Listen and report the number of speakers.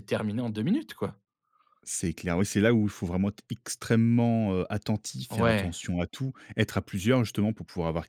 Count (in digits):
2